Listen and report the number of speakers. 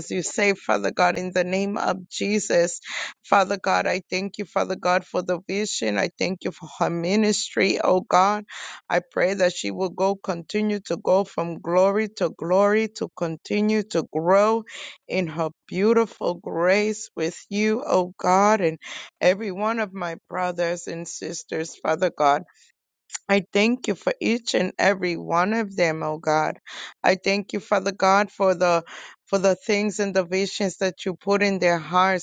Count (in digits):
1